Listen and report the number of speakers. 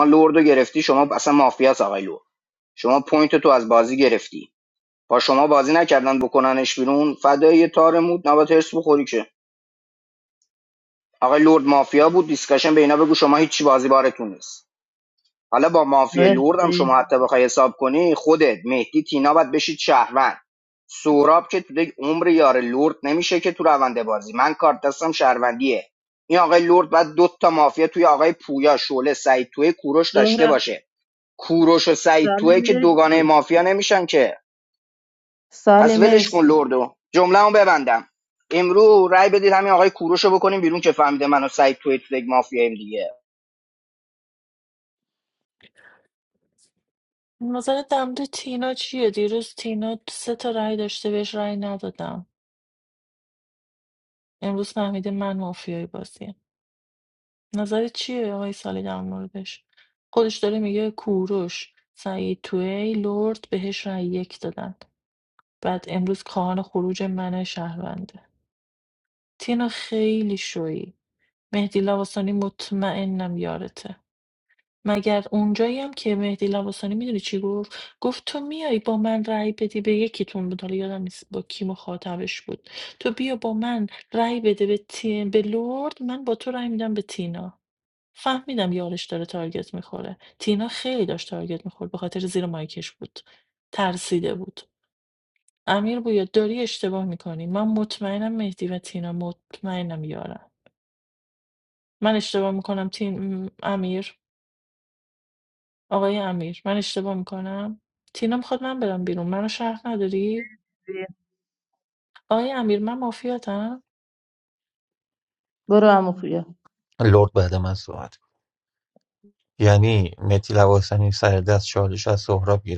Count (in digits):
4